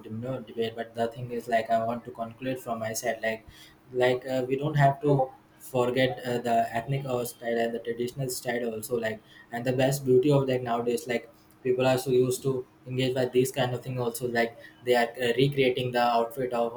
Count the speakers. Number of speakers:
one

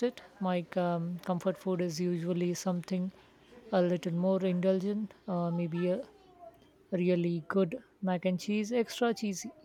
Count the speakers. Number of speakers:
one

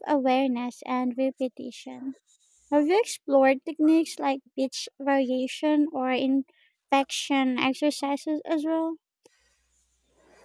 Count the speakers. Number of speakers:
one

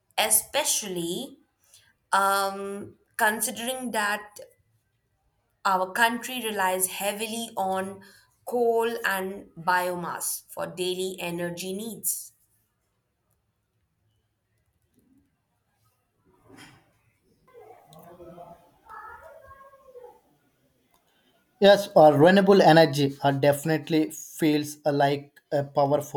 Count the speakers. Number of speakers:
two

